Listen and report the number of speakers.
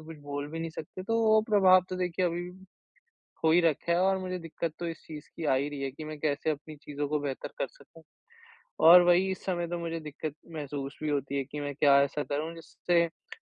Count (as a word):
one